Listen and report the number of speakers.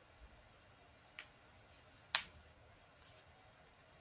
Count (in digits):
0